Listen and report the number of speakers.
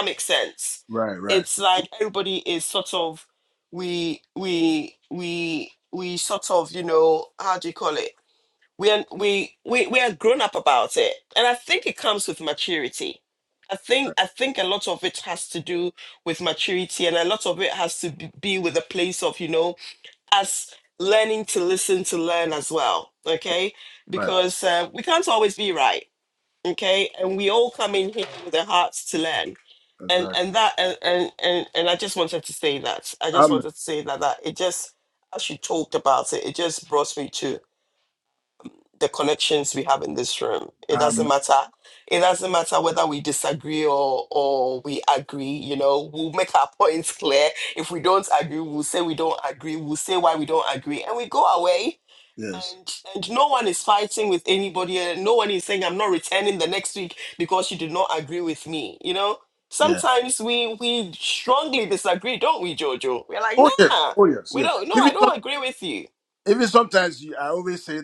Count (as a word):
two